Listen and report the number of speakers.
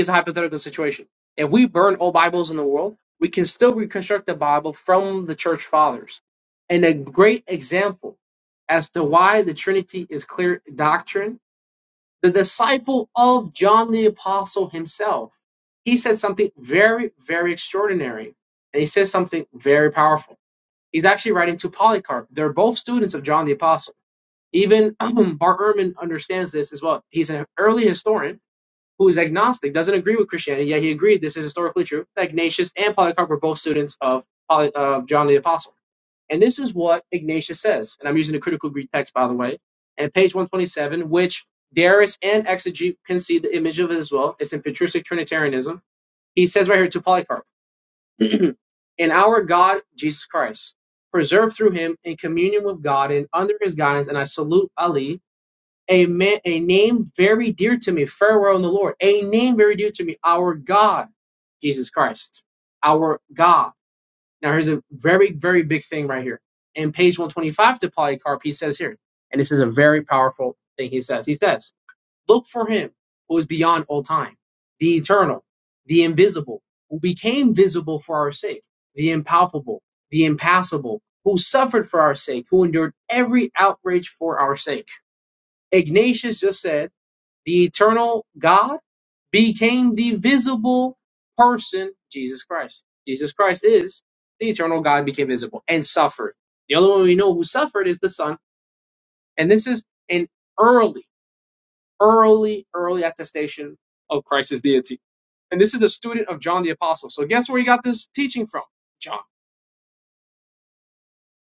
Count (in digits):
1